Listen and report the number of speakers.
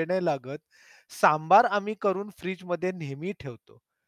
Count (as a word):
one